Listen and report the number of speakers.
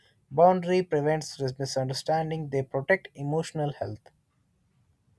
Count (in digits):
1